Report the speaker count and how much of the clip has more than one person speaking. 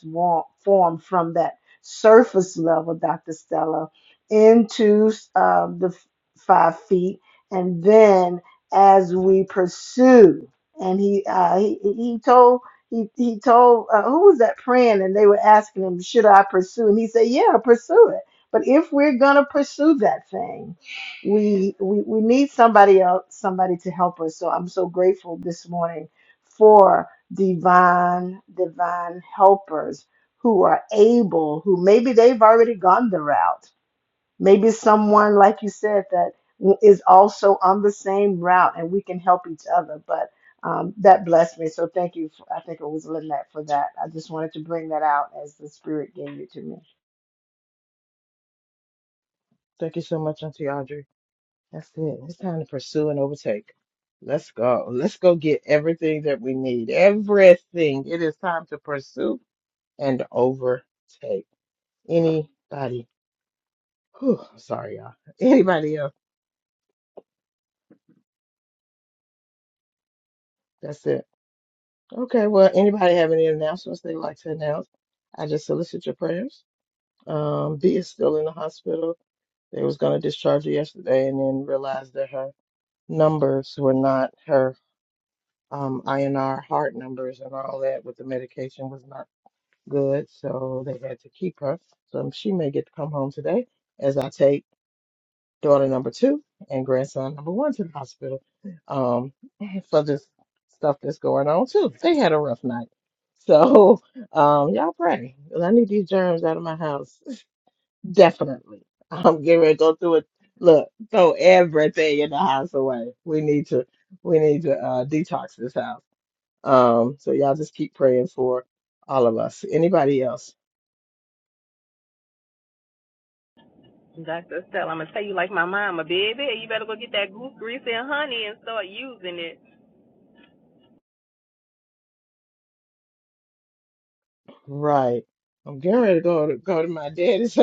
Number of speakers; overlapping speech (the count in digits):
3, no overlap